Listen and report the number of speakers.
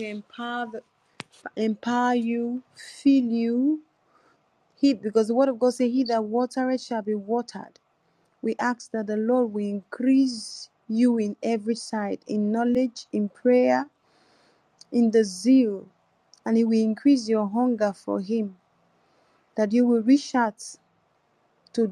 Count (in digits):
1